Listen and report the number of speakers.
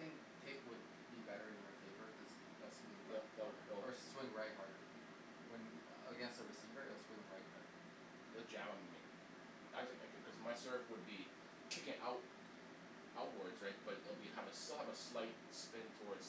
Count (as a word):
two